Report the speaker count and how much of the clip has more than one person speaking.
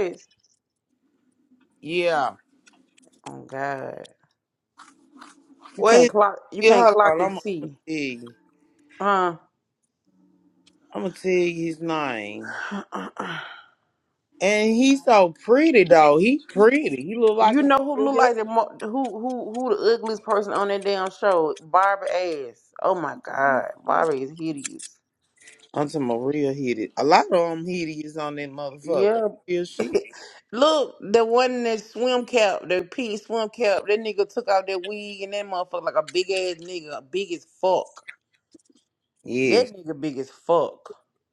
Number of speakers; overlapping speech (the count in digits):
2, about 7%